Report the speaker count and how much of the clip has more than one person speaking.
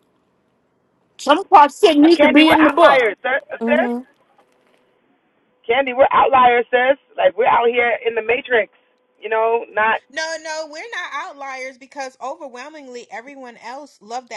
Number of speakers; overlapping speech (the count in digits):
3, about 8%